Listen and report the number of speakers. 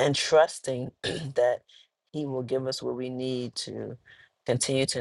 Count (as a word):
one